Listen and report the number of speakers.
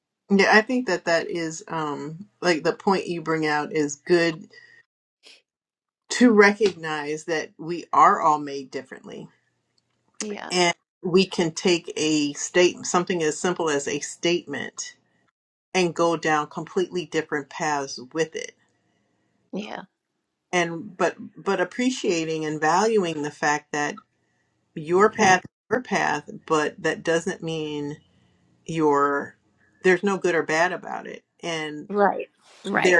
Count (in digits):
2